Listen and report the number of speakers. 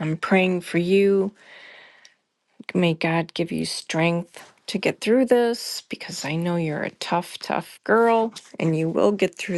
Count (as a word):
one